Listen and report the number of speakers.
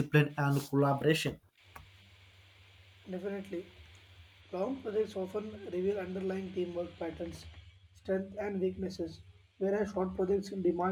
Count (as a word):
two